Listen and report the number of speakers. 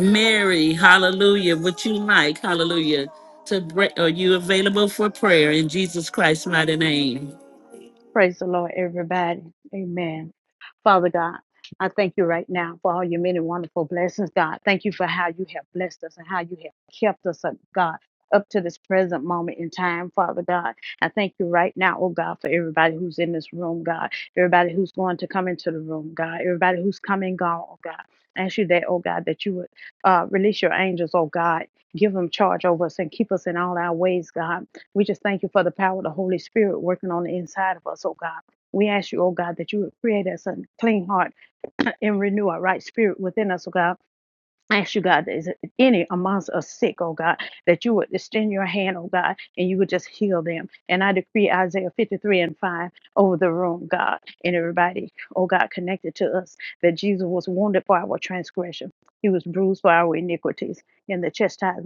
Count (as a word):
two